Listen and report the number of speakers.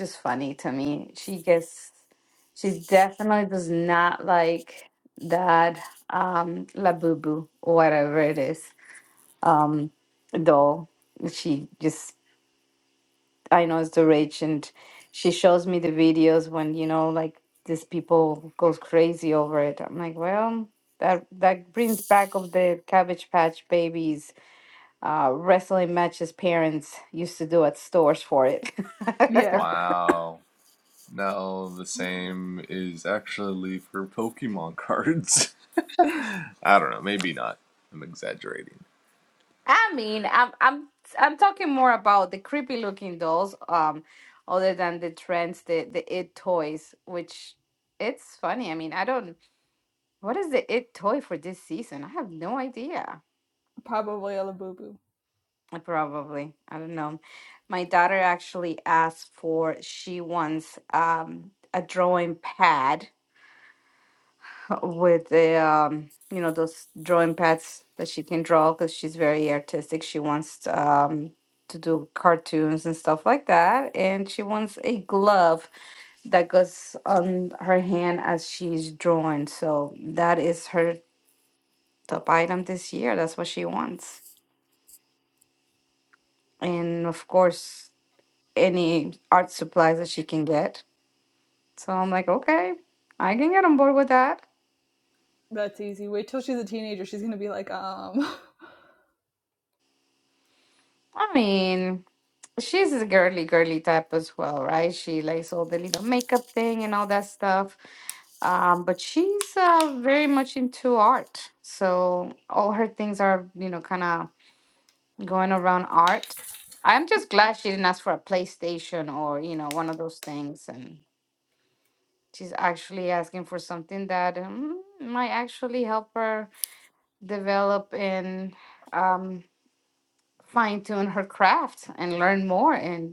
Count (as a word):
three